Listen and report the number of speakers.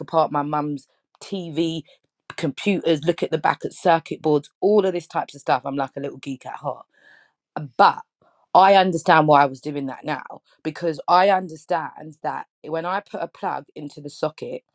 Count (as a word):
one